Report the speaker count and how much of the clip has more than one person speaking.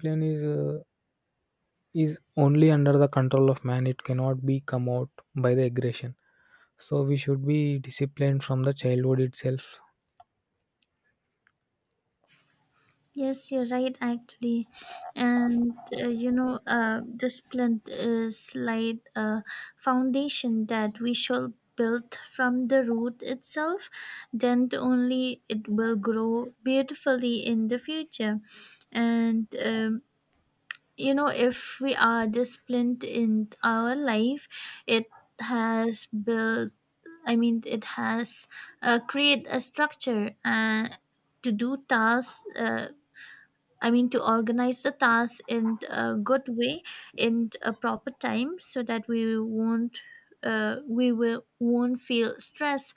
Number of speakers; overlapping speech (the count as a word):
two, no overlap